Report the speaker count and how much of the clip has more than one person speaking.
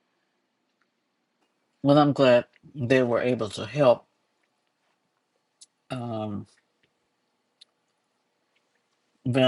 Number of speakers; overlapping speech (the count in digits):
1, no overlap